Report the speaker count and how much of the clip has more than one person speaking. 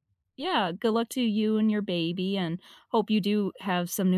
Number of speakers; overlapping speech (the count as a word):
one, no overlap